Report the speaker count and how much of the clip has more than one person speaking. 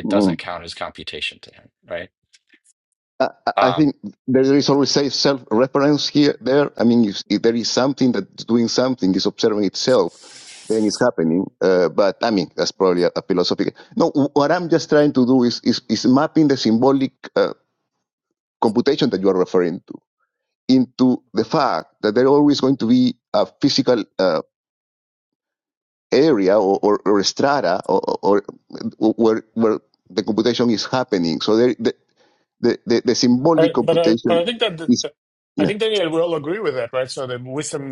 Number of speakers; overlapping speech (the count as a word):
three, about 5%